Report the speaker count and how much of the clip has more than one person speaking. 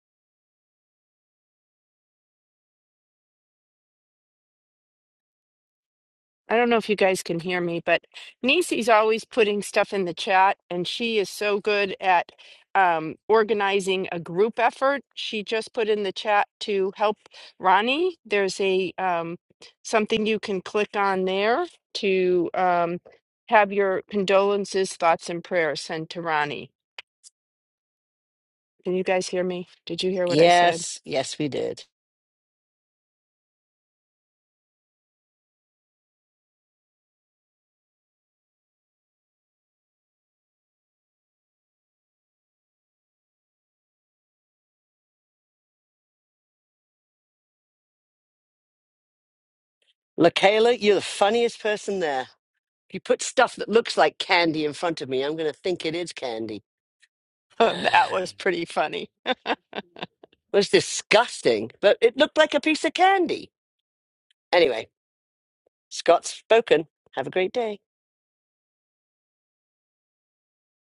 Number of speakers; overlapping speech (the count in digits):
2, about 1%